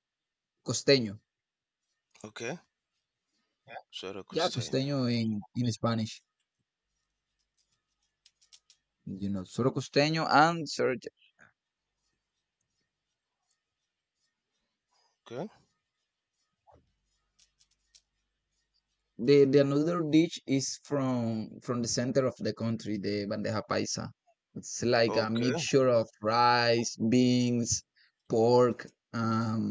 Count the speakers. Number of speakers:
two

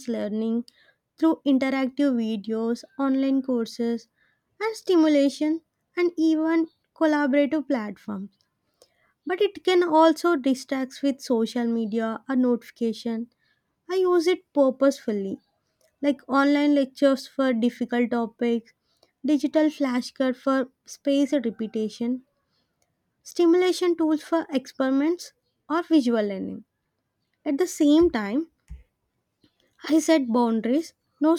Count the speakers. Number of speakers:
one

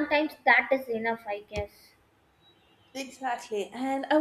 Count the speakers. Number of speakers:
two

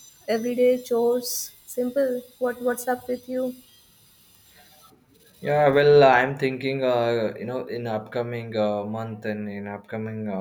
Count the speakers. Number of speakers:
two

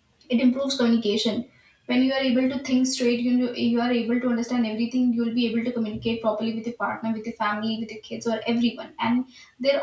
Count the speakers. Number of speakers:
one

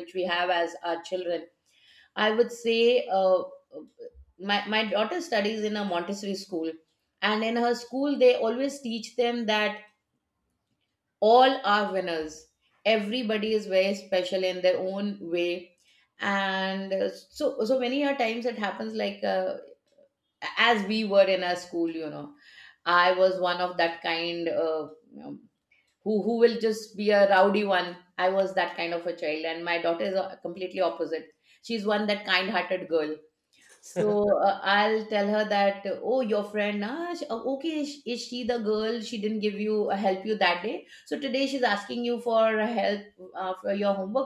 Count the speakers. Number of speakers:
one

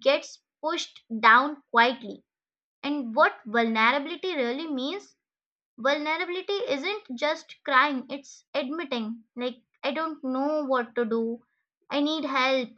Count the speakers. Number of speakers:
one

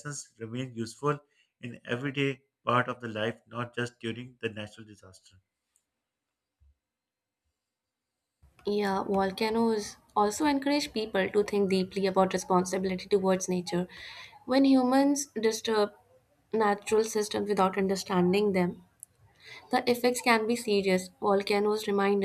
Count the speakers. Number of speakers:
two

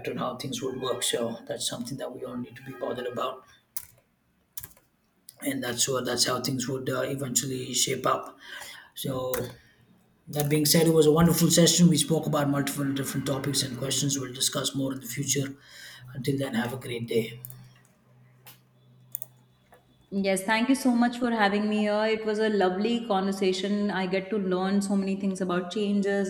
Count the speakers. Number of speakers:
two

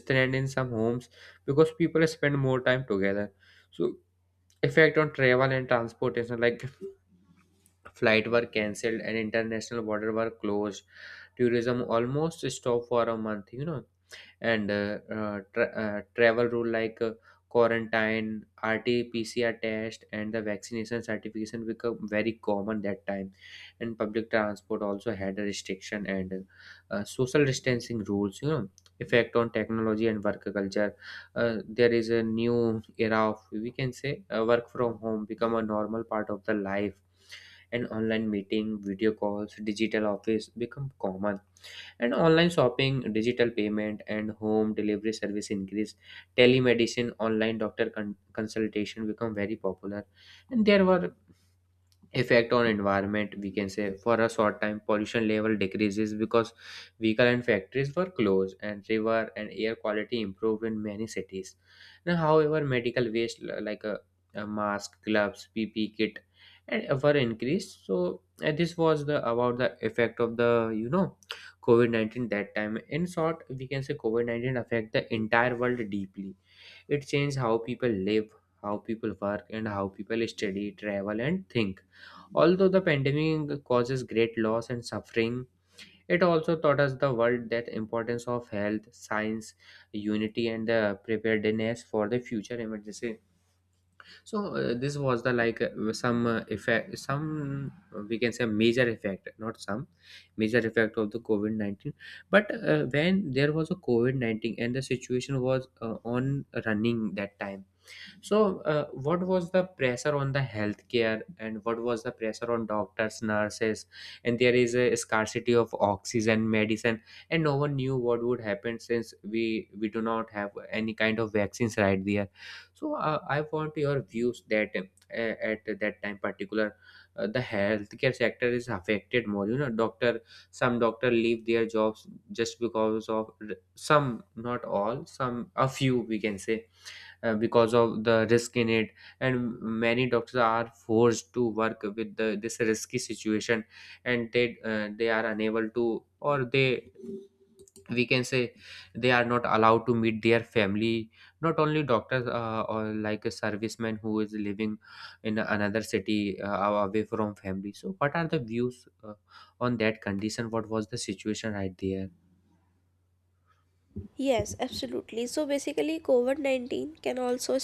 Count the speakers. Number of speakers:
two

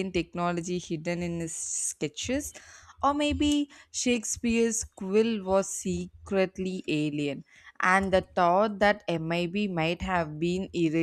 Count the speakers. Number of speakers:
one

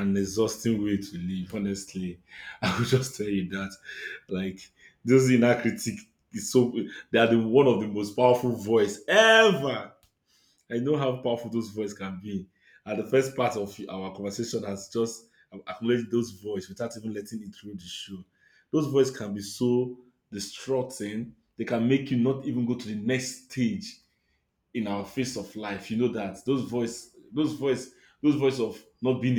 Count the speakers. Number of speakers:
one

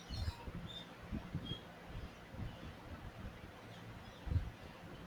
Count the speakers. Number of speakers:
zero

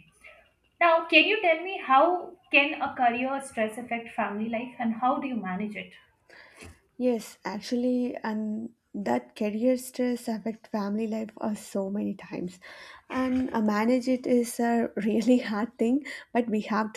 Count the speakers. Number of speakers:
two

